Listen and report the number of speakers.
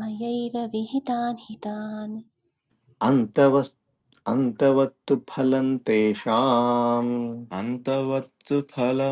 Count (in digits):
3